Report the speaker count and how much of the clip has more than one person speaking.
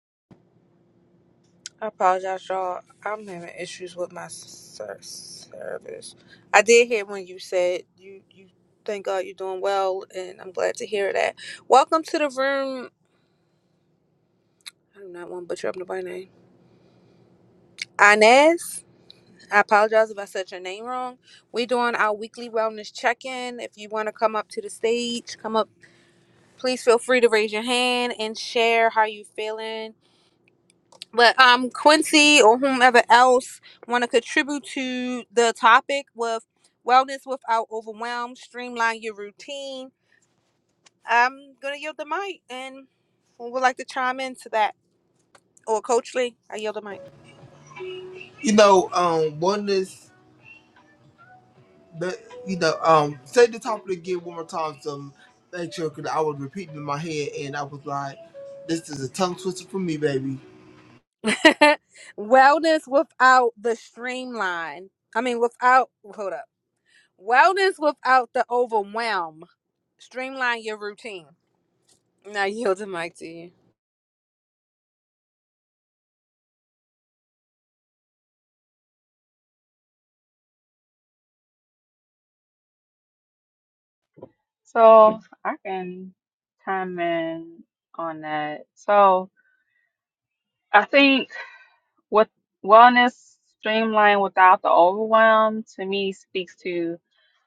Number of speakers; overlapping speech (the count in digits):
3, no overlap